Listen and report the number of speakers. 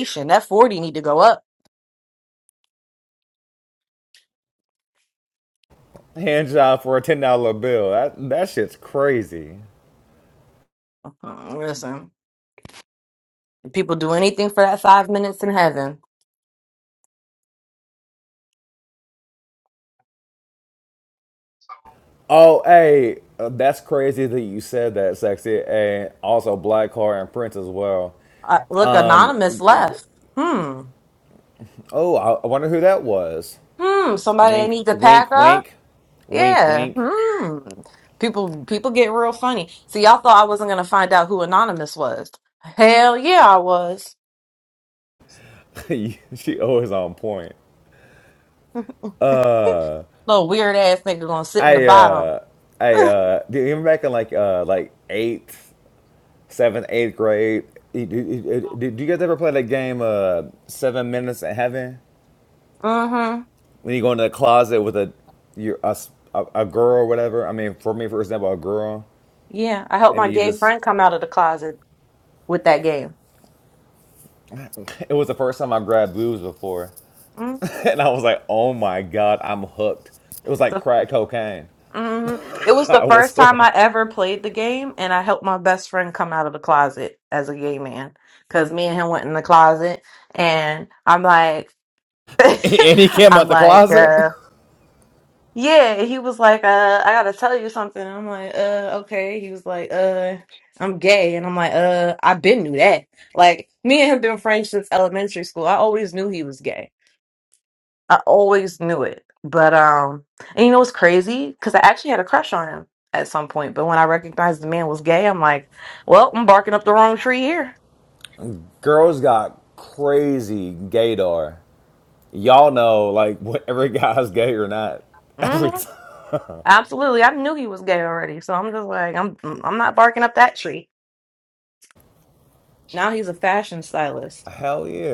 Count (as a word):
two